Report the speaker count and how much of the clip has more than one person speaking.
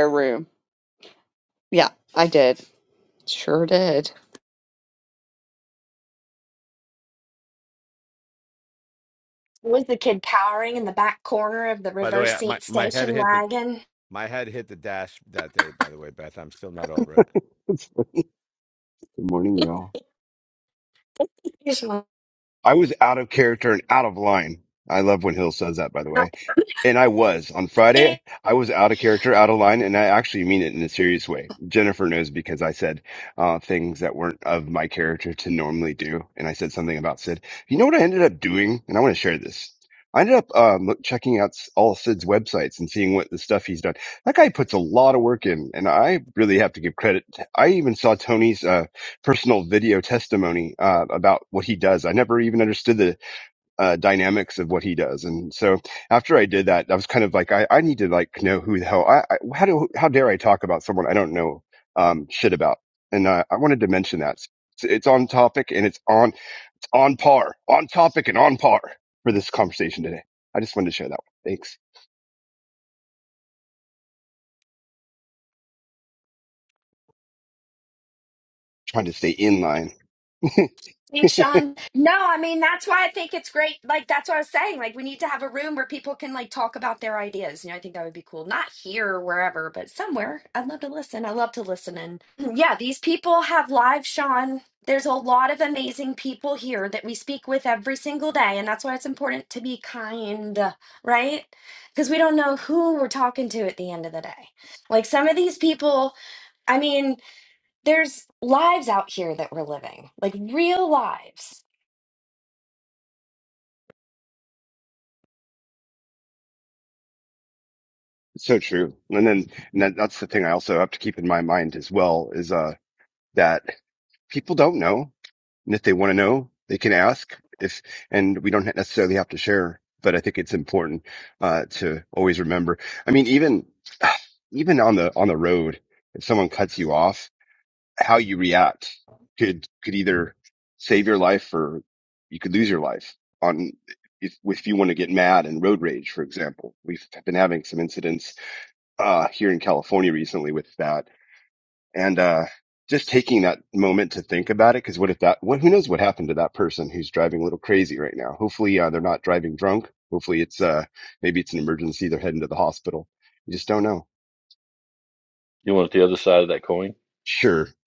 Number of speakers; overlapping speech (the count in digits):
5, about 1%